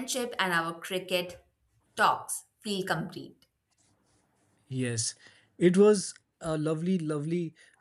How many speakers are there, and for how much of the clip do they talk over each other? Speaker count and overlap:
two, no overlap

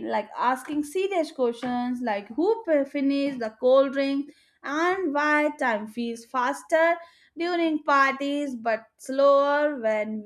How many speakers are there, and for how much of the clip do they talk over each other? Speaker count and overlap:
one, no overlap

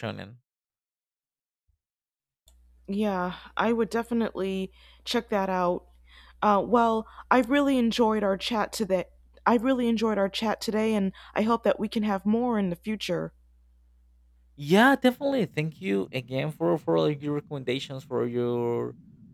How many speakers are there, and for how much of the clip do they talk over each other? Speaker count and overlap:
two, no overlap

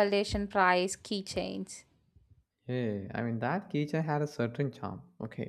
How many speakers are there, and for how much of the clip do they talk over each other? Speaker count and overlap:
two, no overlap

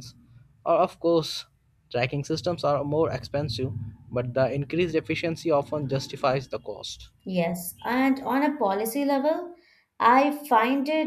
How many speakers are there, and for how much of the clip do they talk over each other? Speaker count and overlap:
two, no overlap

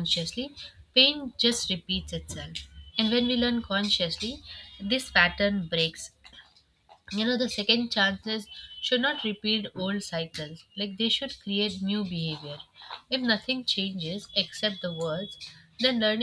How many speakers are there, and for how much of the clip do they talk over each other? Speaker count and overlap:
one, no overlap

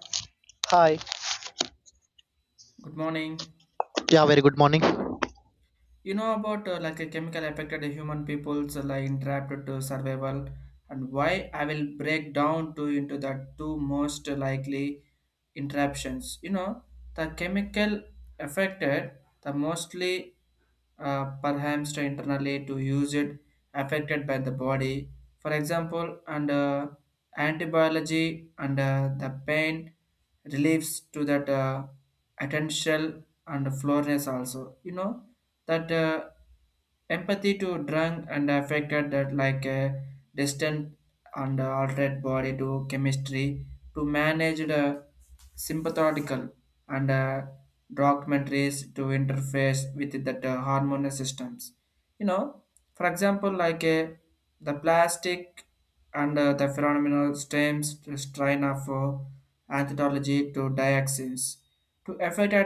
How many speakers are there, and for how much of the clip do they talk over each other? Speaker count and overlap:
two, no overlap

